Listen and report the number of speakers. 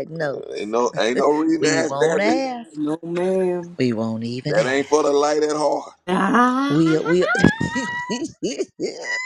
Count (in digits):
3